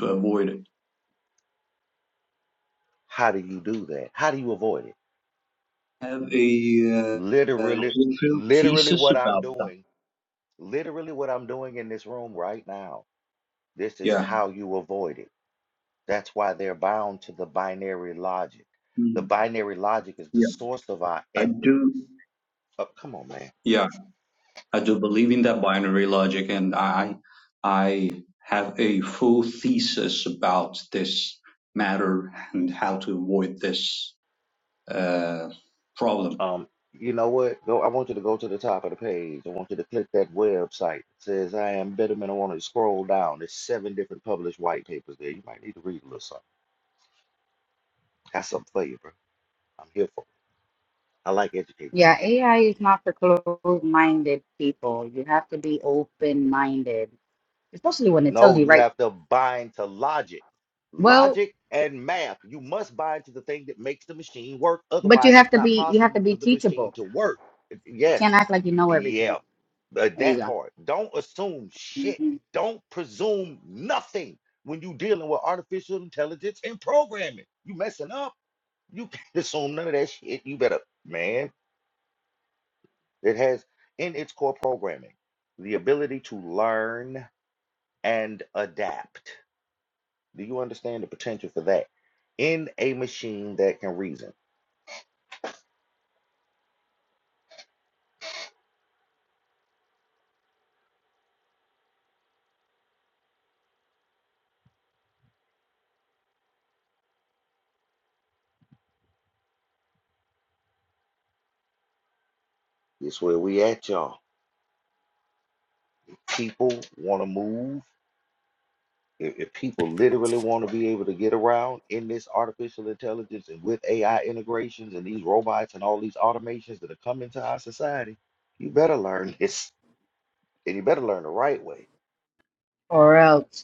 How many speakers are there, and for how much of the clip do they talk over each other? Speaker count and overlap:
3, about 5%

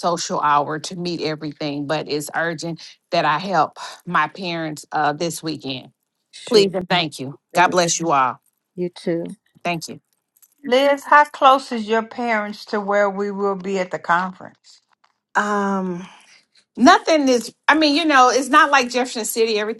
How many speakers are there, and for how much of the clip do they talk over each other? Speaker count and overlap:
3, about 2%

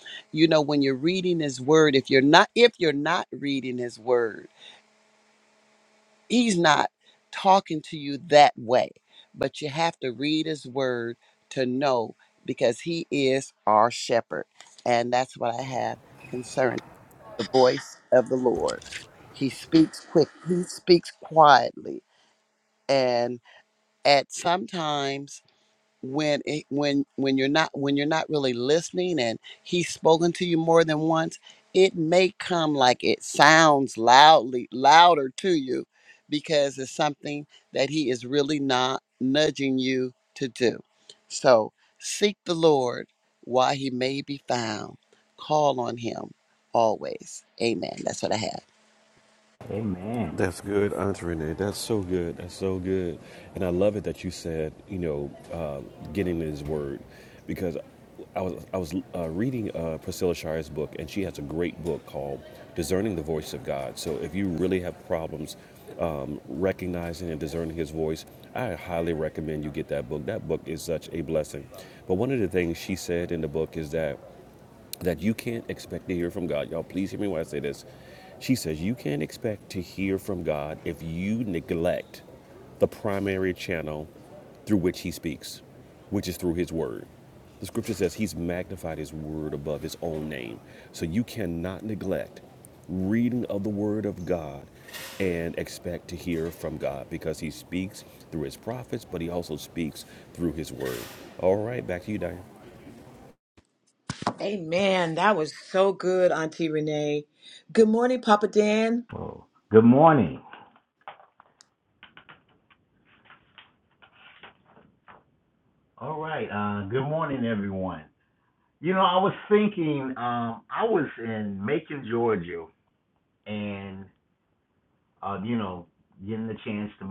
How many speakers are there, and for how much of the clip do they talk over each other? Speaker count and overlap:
4, under 1%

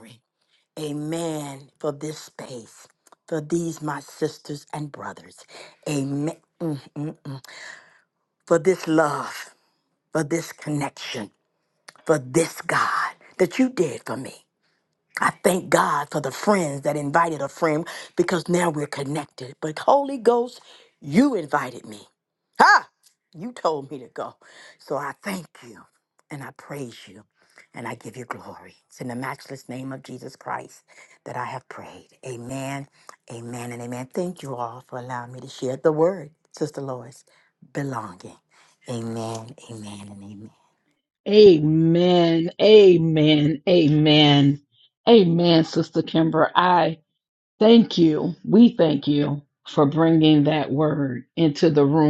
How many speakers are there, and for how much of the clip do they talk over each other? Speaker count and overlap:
2, no overlap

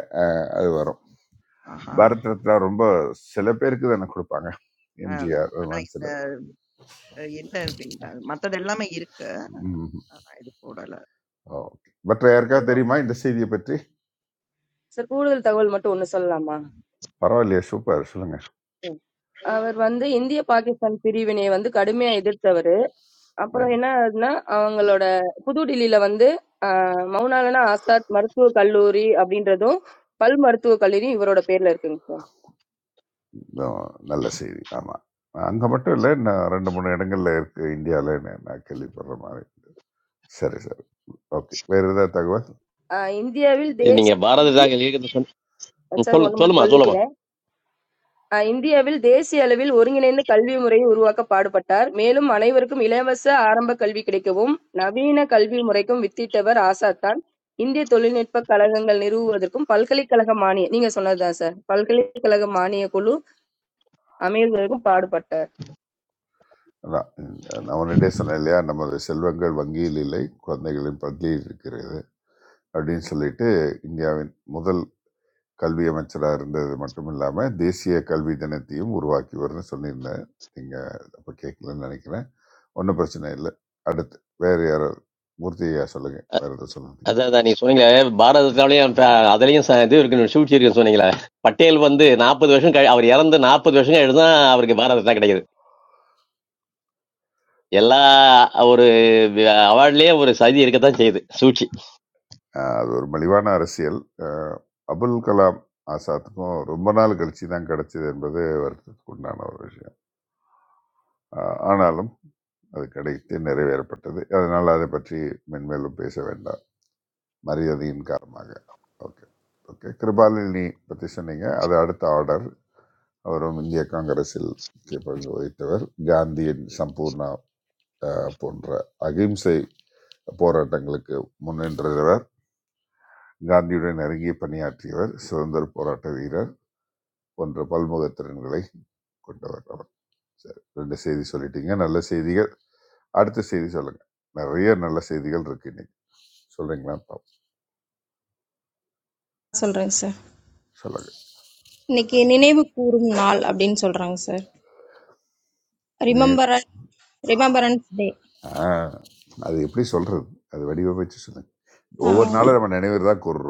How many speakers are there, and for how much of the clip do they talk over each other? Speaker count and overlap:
5, about 2%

